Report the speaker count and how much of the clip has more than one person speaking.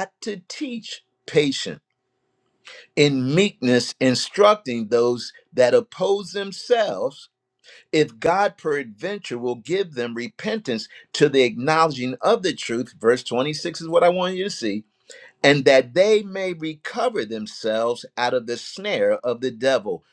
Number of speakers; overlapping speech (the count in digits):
1, no overlap